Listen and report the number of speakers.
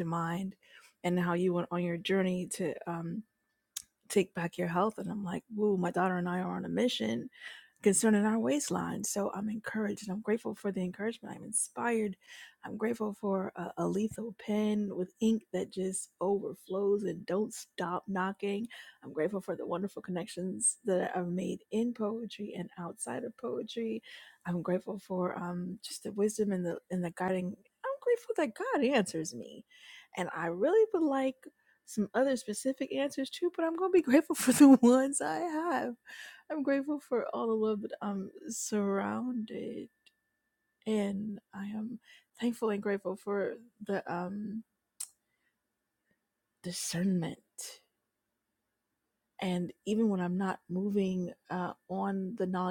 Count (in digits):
1